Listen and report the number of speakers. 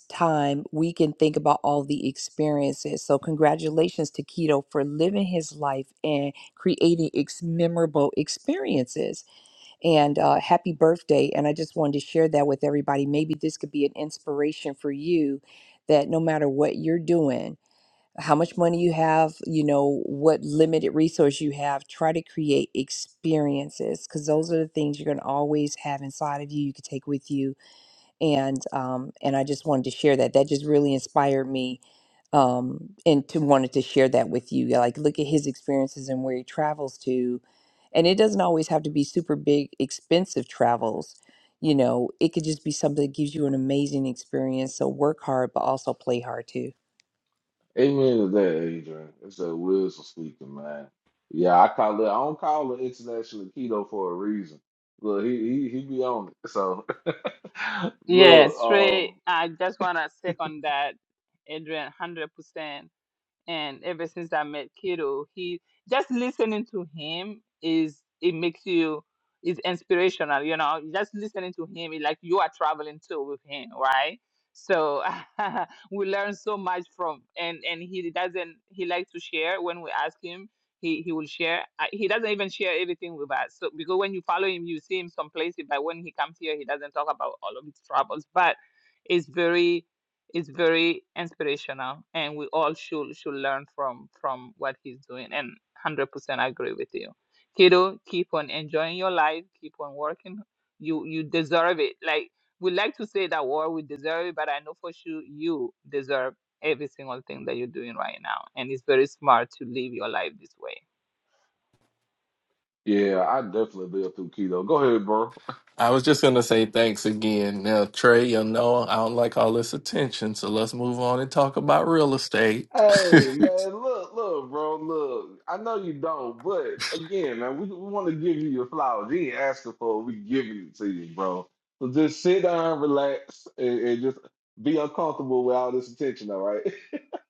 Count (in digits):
4